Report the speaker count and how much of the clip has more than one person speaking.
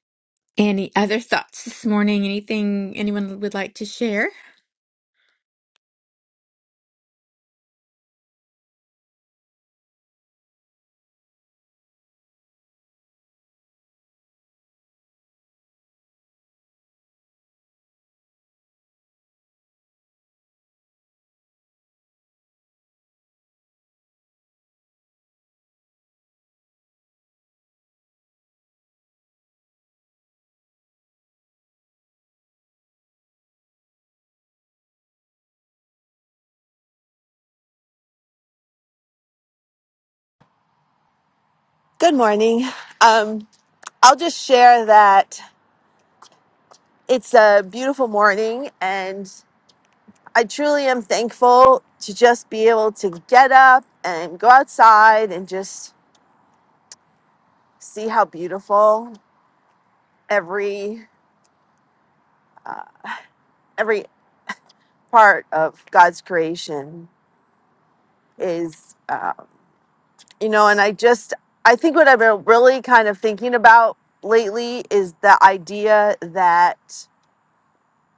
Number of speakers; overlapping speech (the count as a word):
two, no overlap